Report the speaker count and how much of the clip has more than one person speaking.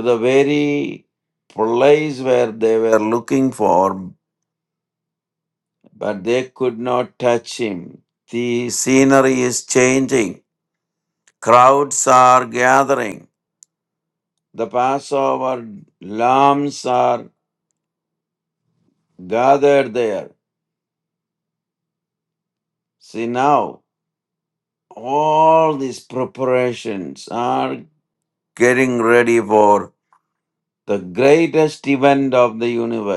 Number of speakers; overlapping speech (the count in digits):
1, no overlap